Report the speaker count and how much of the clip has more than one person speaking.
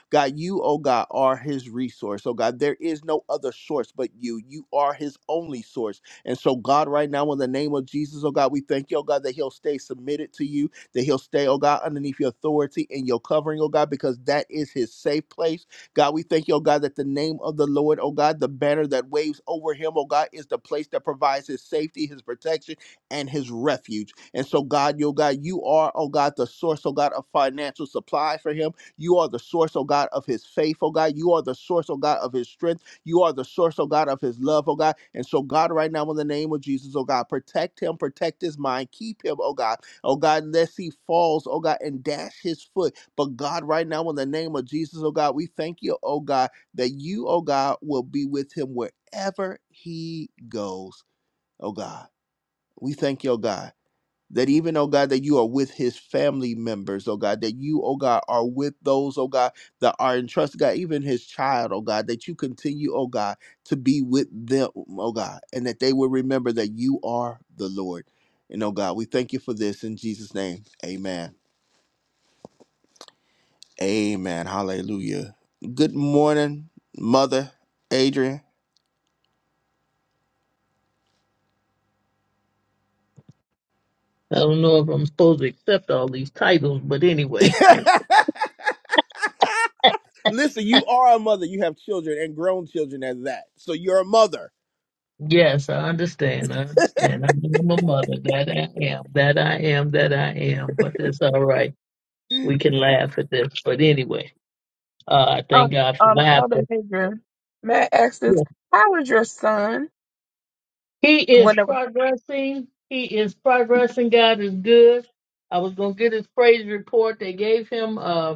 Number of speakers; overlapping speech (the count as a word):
three, about 1%